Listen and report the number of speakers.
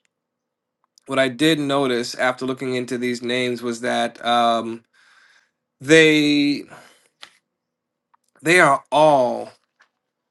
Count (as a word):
one